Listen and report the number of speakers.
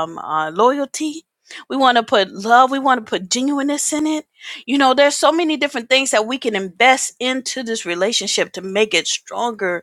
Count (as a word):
one